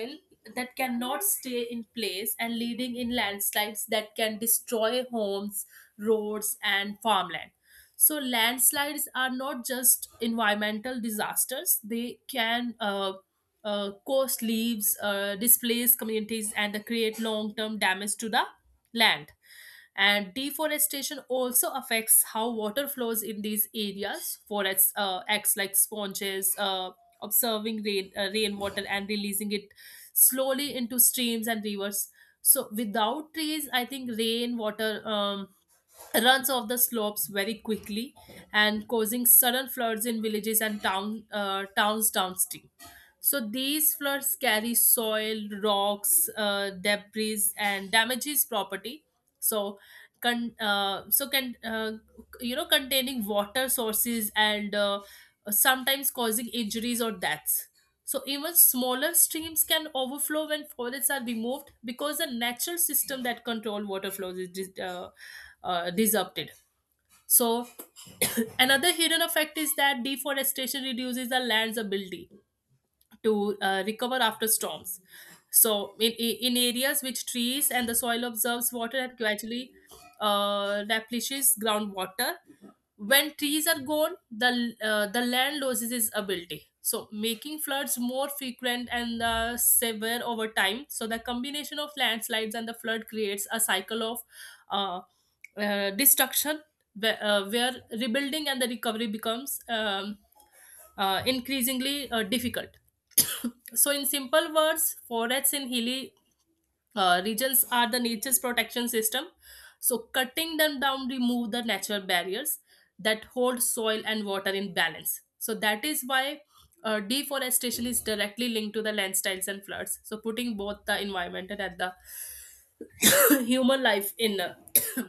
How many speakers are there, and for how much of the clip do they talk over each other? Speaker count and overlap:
1, no overlap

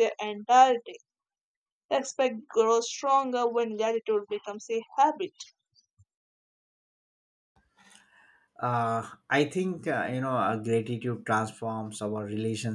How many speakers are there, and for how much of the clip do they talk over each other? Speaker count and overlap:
2, no overlap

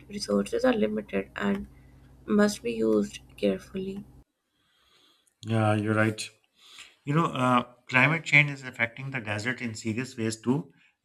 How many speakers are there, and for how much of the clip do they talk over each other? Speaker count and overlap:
2, no overlap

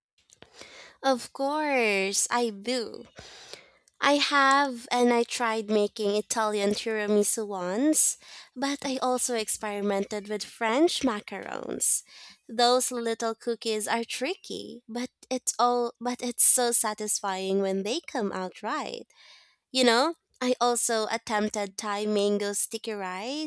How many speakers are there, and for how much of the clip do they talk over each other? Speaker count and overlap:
1, no overlap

